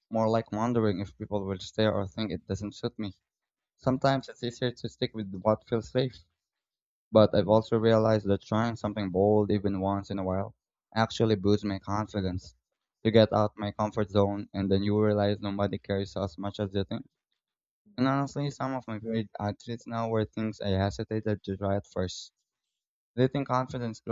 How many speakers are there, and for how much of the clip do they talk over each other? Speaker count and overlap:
1, no overlap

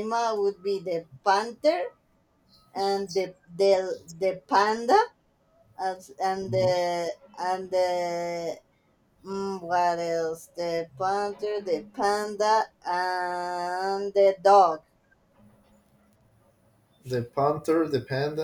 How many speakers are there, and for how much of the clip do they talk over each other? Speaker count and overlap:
2, about 1%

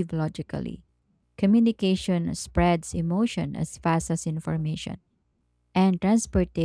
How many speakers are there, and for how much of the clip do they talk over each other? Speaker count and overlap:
1, no overlap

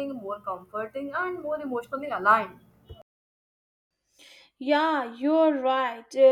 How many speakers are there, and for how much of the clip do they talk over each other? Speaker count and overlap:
2, no overlap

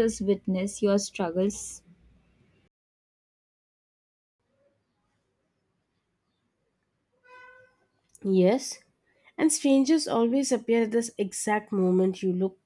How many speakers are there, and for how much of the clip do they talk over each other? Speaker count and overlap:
2, no overlap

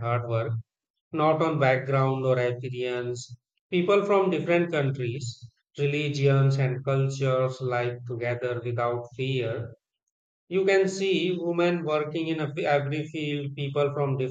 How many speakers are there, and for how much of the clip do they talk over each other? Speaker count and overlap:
1, no overlap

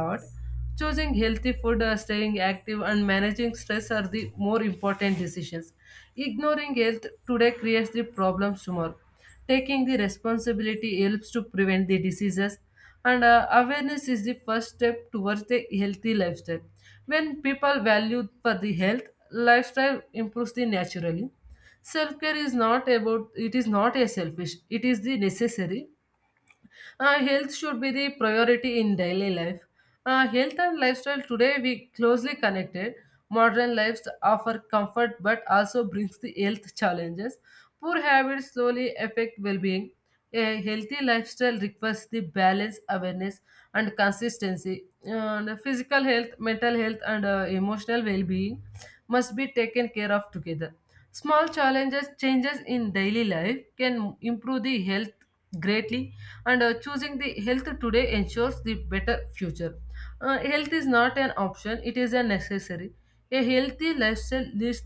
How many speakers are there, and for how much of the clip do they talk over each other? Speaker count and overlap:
1, no overlap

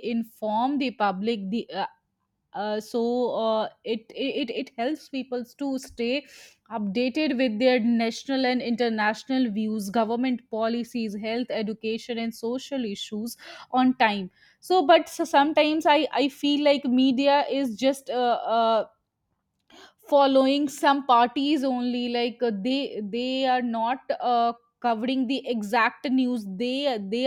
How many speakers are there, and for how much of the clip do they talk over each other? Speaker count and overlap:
1, no overlap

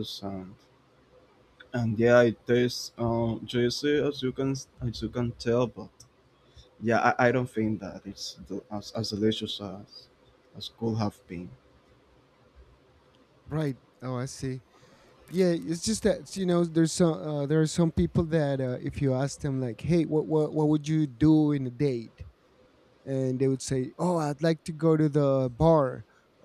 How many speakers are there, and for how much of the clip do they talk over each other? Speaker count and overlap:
2, no overlap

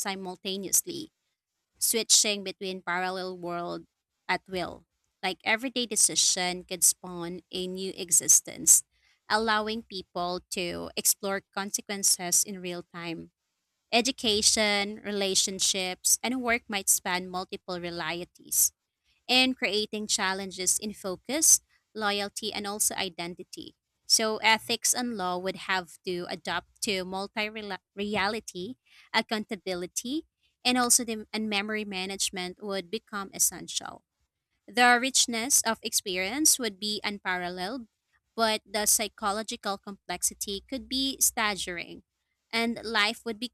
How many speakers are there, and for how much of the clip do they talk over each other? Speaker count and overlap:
1, no overlap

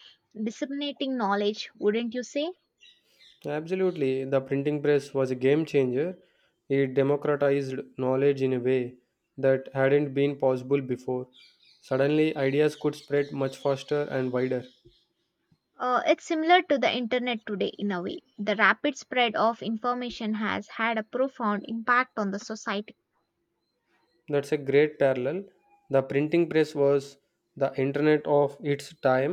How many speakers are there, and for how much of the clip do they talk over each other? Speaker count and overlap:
2, no overlap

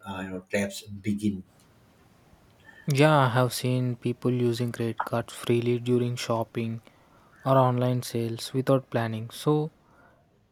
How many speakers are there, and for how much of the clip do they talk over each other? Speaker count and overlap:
2, no overlap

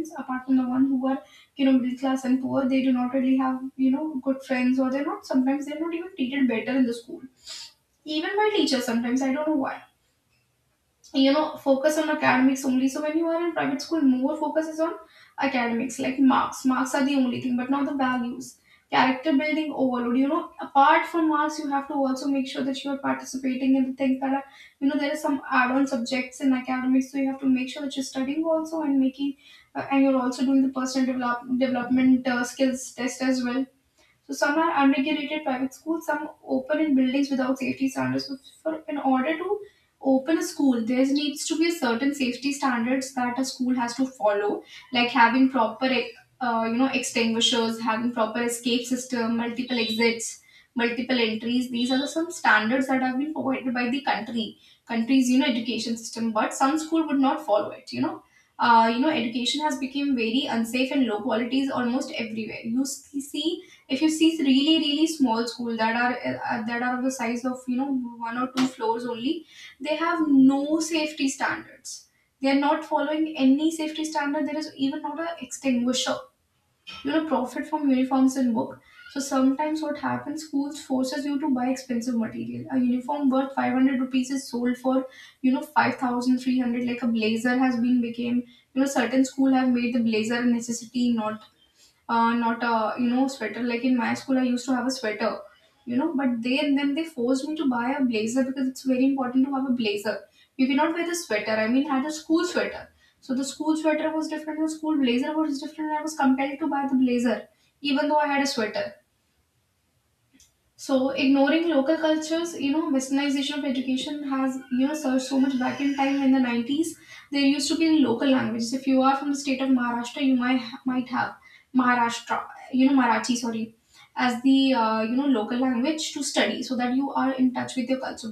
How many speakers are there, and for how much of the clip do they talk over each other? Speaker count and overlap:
1, no overlap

